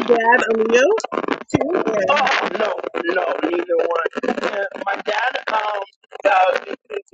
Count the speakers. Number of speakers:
two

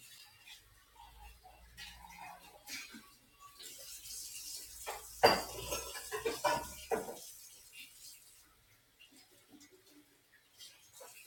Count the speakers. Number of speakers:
zero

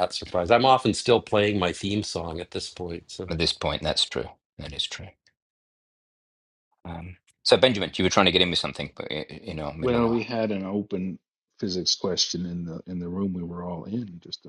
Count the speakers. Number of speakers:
three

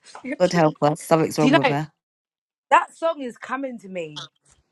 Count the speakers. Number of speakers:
two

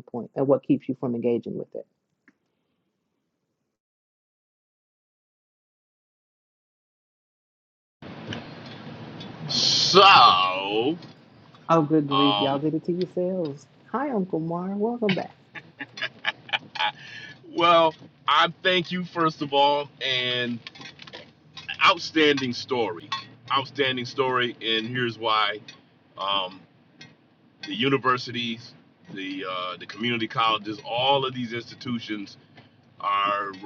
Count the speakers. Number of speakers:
two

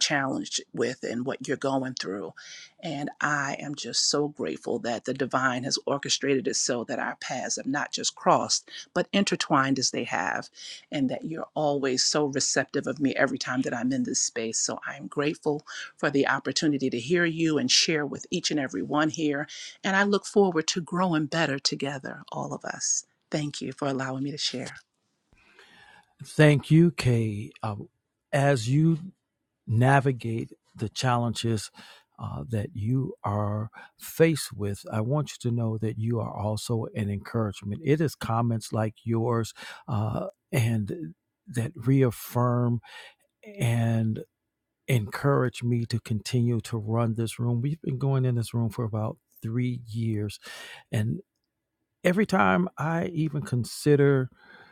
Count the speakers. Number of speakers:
two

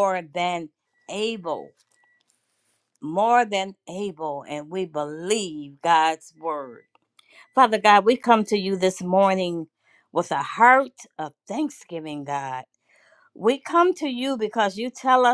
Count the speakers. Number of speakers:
one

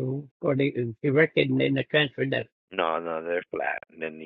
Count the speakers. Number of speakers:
two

